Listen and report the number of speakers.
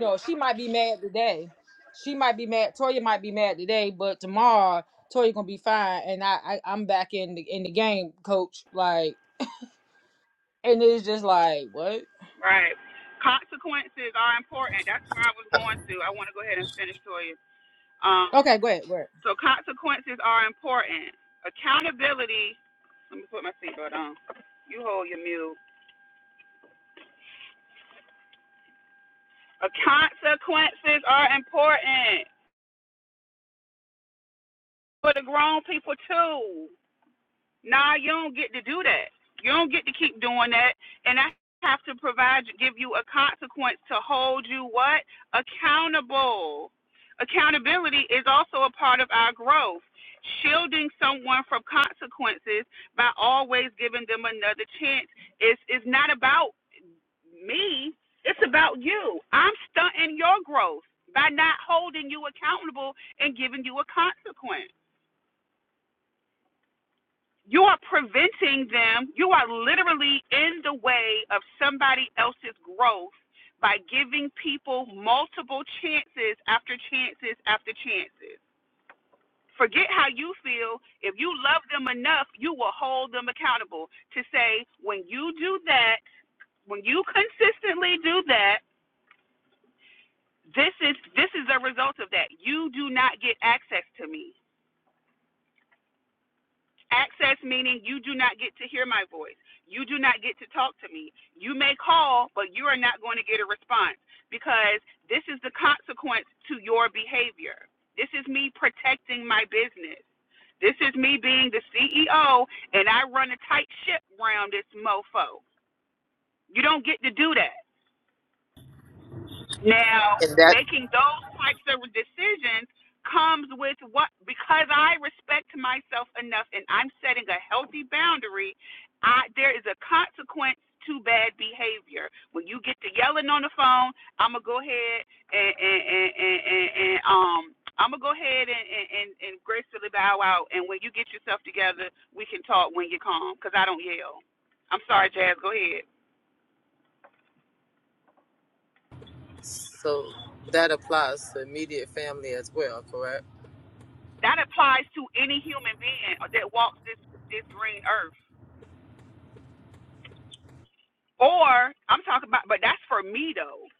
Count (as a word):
three